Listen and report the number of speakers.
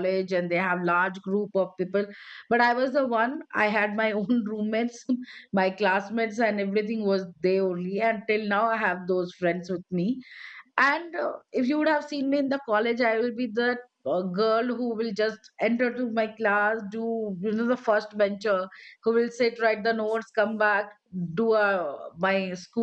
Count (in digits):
1